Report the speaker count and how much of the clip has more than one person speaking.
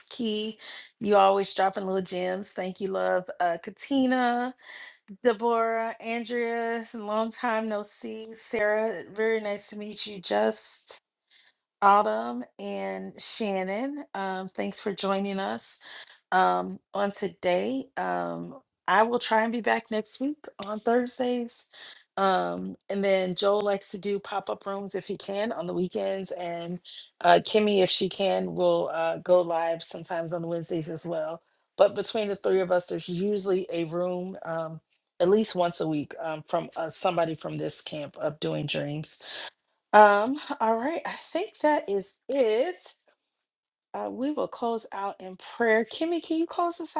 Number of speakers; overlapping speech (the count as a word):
one, no overlap